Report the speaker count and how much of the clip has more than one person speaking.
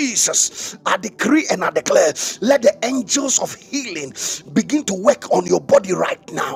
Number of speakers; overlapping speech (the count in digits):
1, no overlap